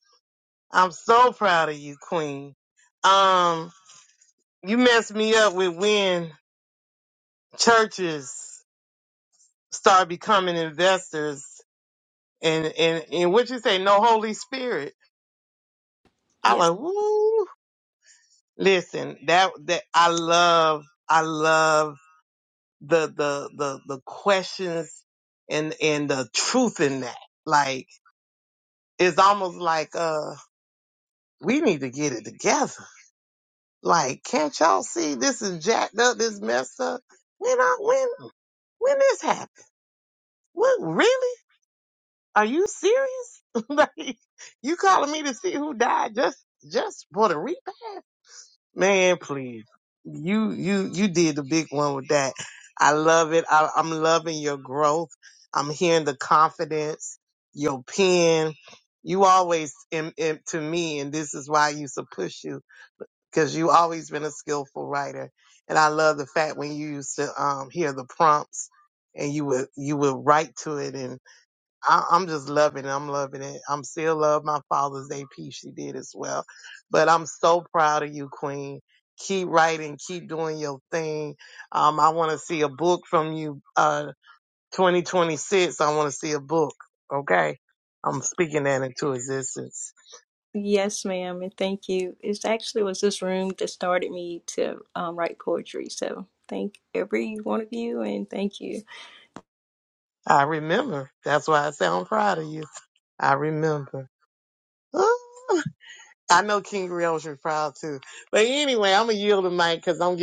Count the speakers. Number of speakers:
2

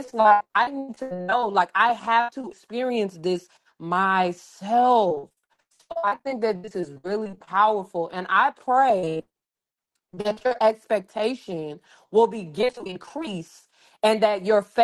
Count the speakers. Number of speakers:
1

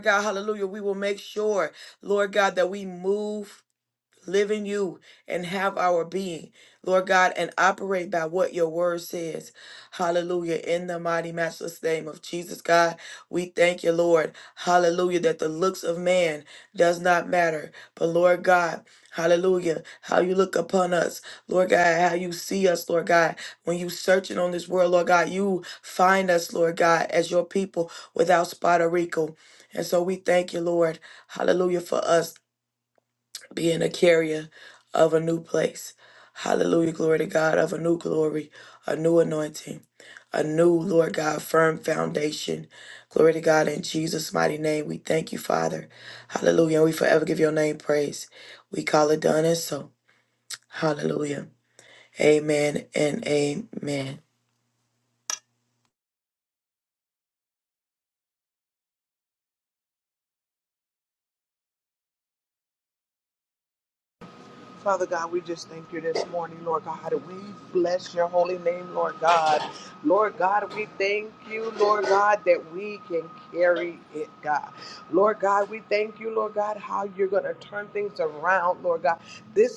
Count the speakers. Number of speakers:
2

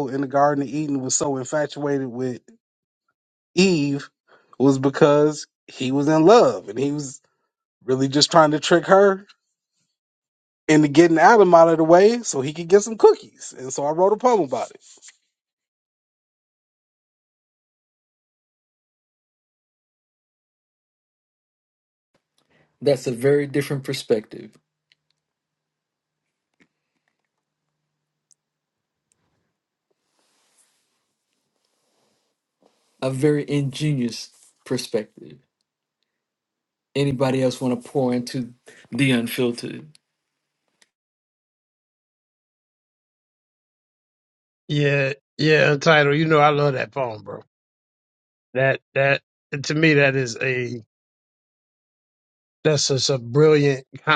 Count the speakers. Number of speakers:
3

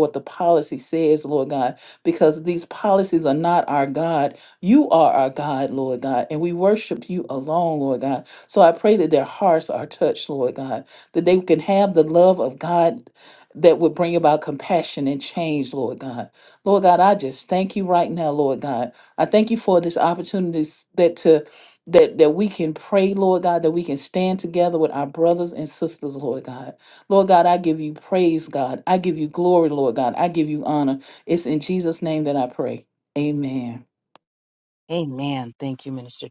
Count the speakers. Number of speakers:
2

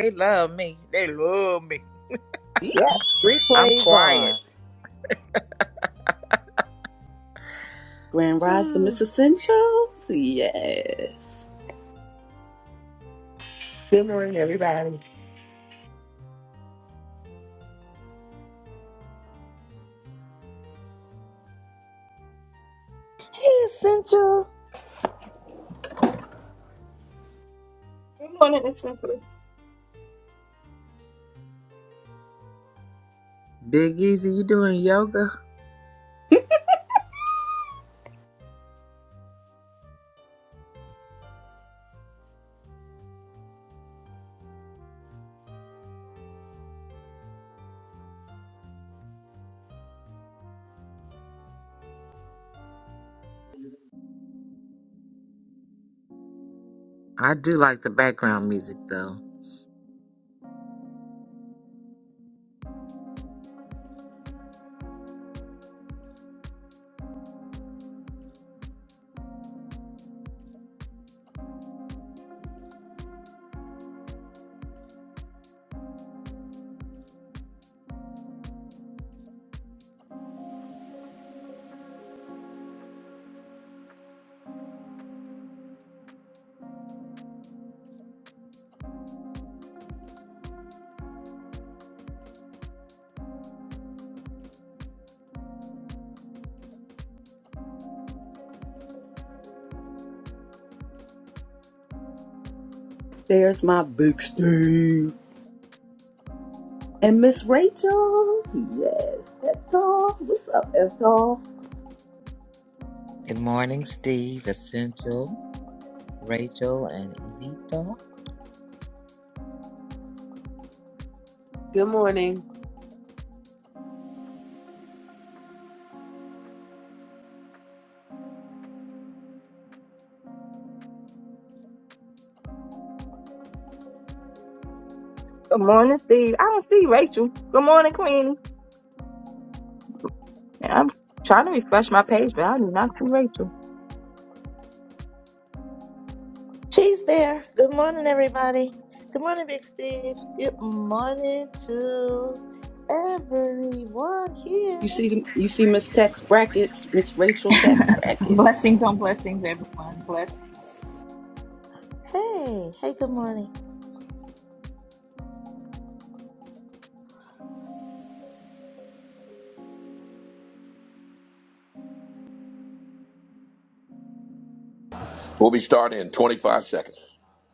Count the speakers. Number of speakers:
7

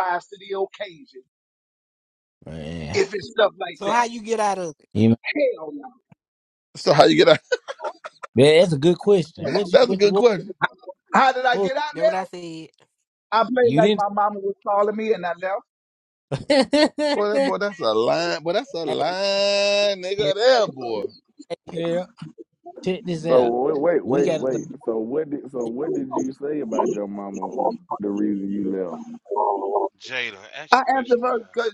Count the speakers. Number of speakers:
6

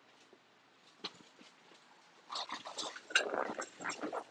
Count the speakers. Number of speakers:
0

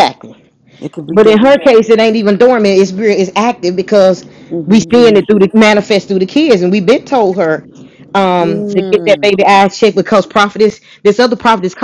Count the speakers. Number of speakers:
2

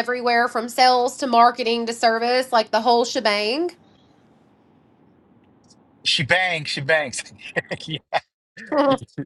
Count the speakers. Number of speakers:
2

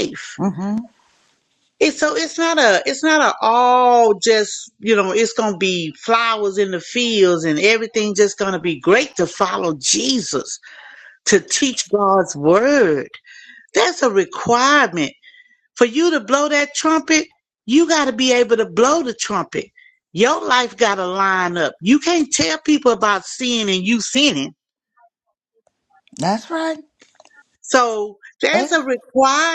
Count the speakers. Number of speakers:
2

